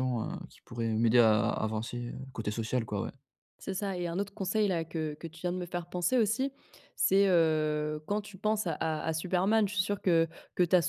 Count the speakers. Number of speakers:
2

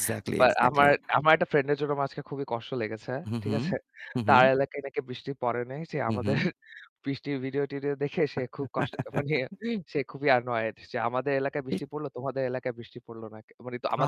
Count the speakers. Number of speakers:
2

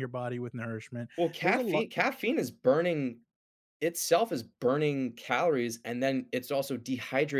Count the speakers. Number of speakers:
2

